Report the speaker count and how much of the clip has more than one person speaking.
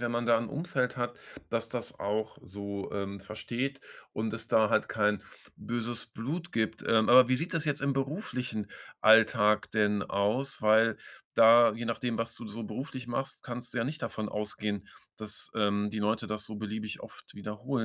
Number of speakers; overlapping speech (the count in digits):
1, no overlap